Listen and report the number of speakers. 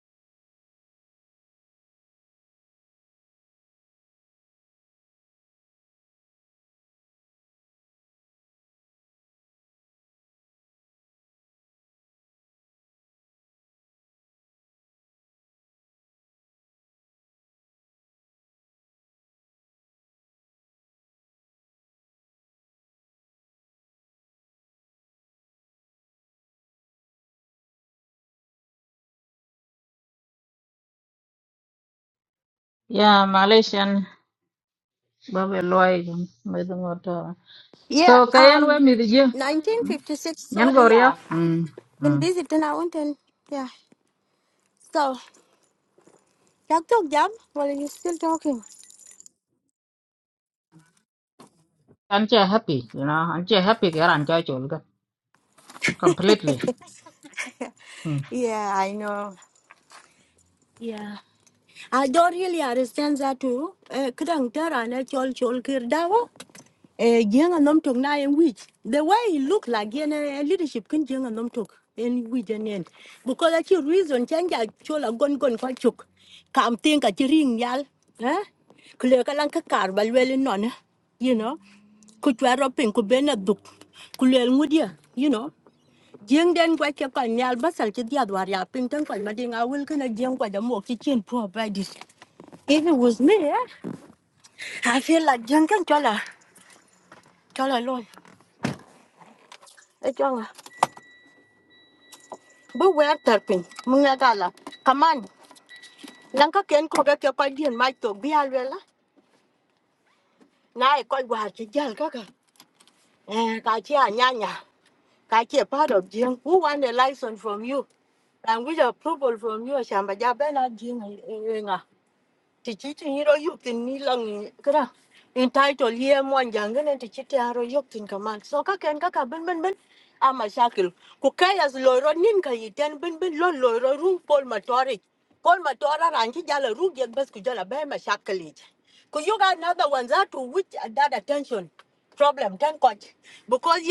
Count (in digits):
2